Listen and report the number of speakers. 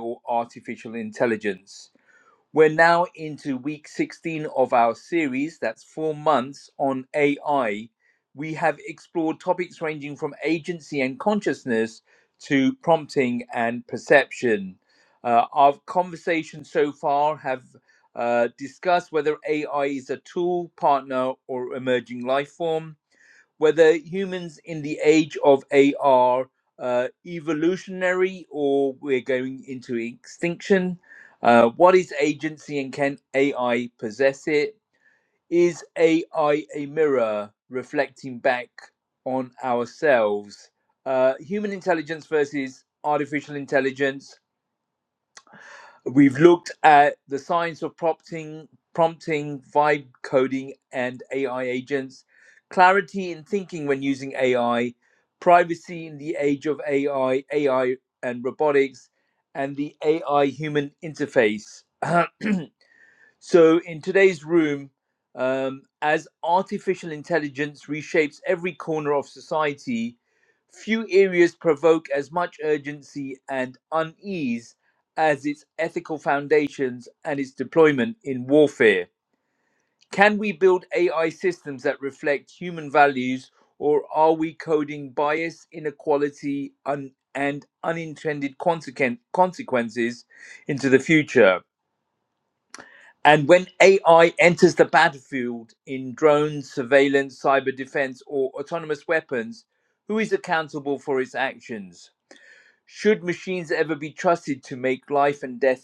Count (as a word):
one